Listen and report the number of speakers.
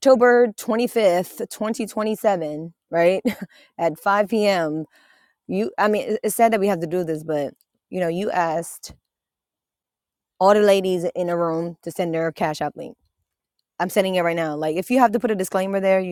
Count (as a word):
one